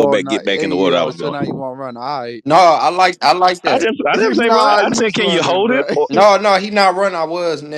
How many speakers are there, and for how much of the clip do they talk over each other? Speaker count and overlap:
three, about 41%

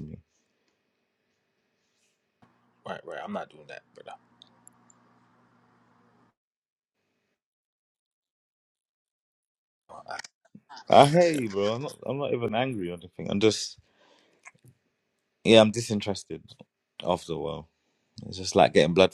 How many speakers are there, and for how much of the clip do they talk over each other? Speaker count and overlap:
two, about 2%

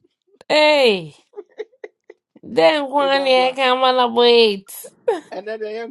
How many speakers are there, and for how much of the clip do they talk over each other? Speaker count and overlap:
two, about 9%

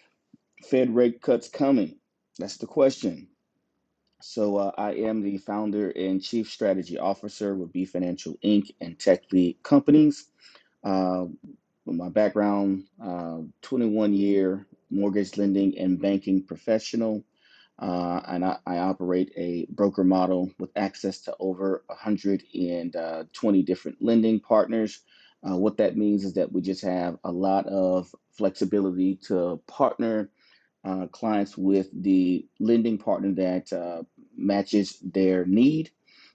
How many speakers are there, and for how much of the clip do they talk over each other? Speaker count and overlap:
one, no overlap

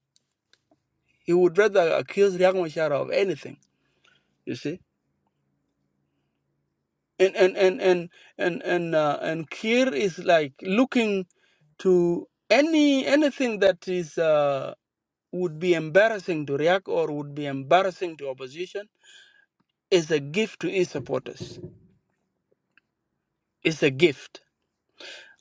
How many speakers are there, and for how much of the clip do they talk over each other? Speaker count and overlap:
one, no overlap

